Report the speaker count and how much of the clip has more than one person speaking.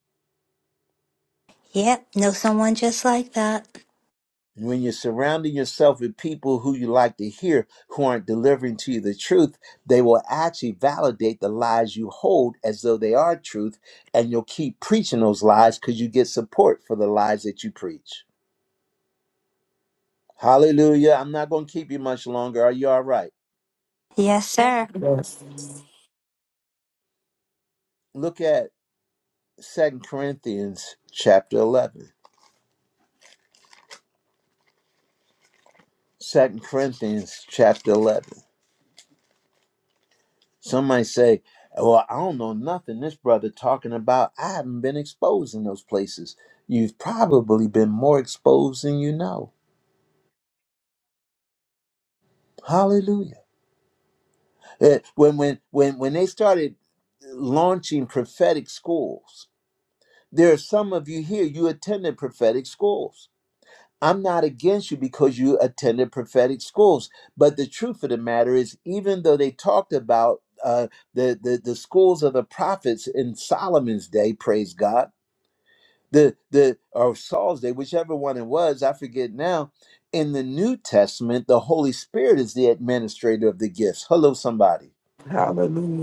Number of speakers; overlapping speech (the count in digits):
3, no overlap